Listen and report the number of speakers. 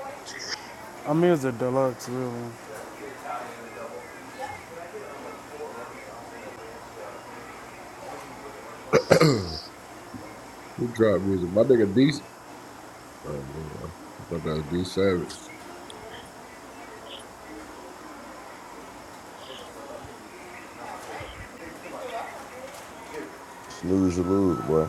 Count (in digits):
3